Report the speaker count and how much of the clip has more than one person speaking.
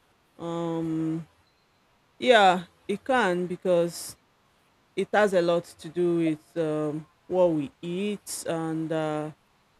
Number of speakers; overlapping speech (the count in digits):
1, no overlap